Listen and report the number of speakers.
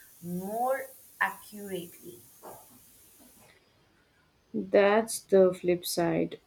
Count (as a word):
two